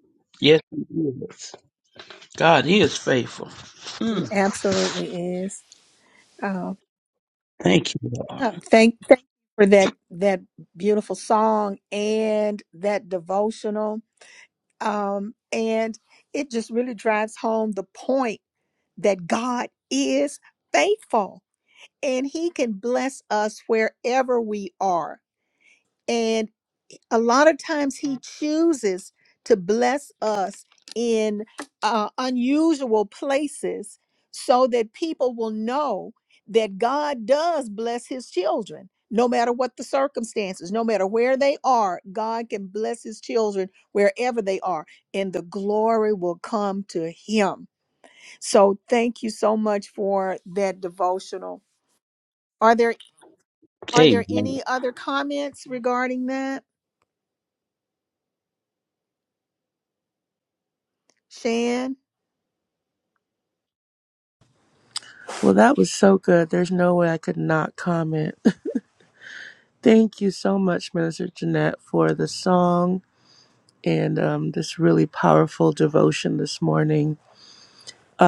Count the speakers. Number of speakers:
3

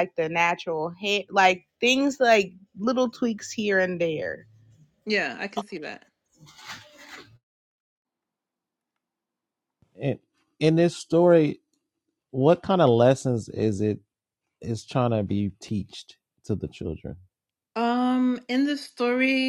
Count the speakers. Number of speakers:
3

